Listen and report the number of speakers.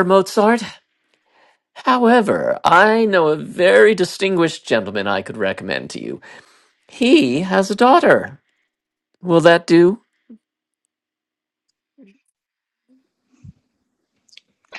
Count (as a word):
one